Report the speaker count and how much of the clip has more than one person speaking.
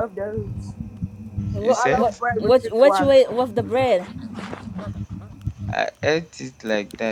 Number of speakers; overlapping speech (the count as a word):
three, about 22%